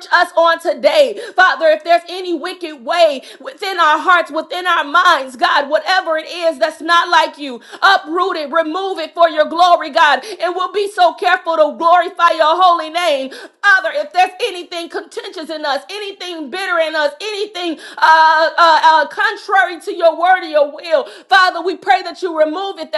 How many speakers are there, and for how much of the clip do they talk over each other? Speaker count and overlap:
1, no overlap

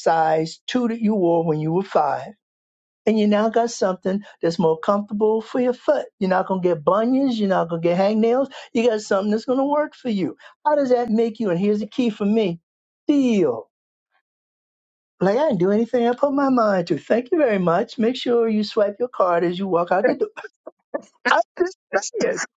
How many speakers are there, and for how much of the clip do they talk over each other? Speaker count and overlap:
1, no overlap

